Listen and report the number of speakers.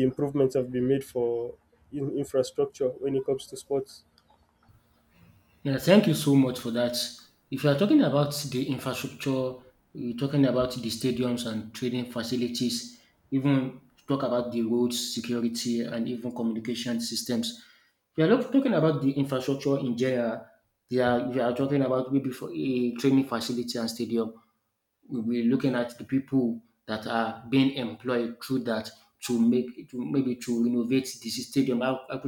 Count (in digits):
2